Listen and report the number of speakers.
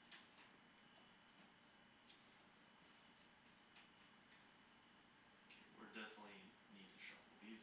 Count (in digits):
1